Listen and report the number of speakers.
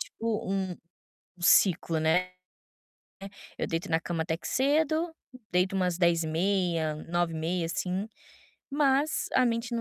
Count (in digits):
1